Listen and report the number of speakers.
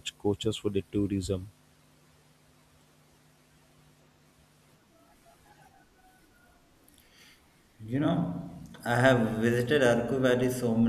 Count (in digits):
2